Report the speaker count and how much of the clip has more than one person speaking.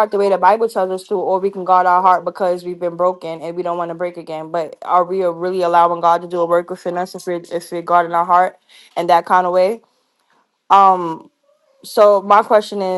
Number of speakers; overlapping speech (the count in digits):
1, no overlap